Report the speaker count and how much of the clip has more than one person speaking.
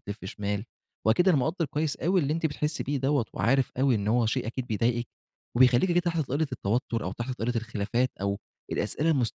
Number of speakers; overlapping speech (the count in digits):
1, no overlap